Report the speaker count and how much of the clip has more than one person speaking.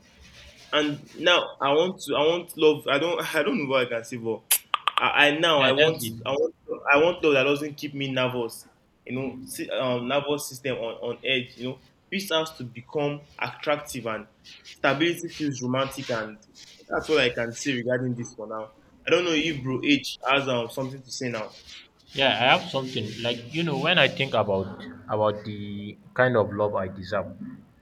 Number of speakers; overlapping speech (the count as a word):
two, about 2%